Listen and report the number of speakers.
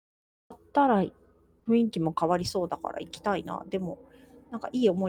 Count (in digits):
1